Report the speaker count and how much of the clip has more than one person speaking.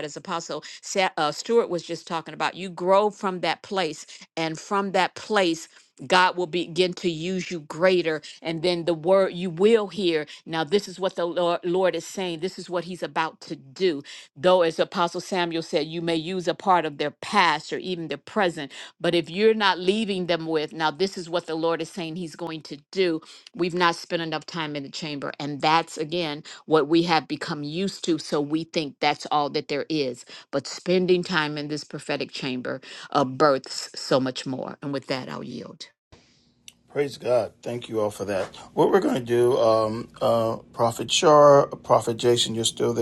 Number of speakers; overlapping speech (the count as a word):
two, no overlap